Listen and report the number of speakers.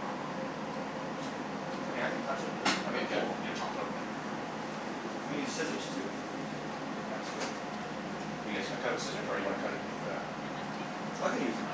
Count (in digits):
2